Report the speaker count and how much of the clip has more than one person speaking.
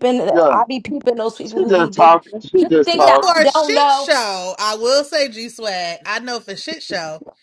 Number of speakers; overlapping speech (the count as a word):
three, about 32%